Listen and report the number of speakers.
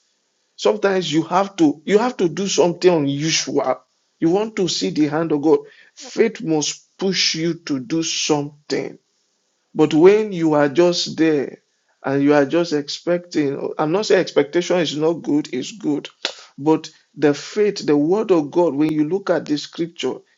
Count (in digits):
1